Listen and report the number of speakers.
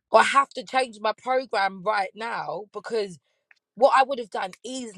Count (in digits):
1